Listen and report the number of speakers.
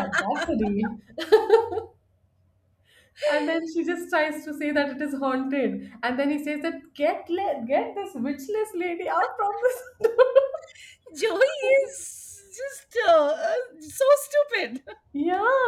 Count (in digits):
2